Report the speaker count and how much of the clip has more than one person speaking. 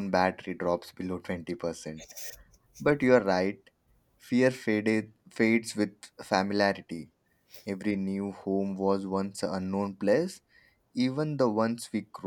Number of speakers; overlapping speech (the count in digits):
1, no overlap